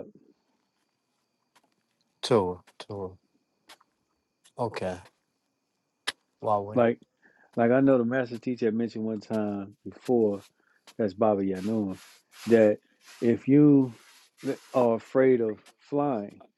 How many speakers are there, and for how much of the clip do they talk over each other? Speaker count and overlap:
2, under 1%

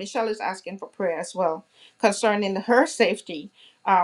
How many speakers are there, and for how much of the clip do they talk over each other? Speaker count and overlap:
1, no overlap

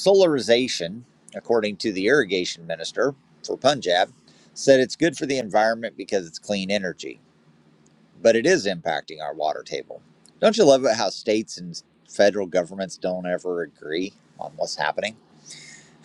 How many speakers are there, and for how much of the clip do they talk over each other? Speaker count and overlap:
1, no overlap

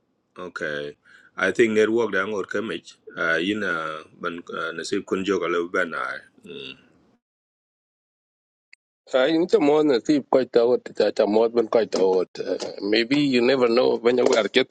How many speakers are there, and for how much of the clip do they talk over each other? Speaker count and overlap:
2, no overlap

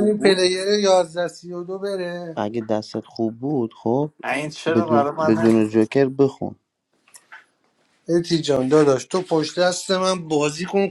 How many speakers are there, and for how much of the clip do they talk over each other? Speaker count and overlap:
3, about 11%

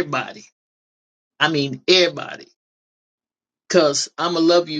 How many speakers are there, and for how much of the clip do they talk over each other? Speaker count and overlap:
1, no overlap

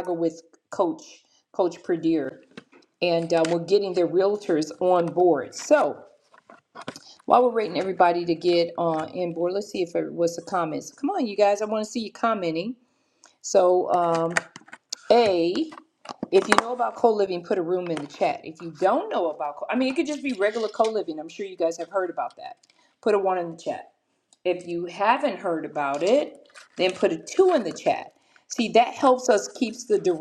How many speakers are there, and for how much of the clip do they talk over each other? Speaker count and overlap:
1, no overlap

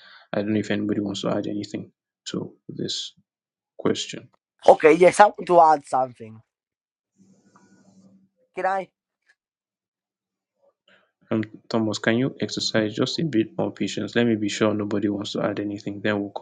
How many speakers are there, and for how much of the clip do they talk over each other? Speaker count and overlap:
2, no overlap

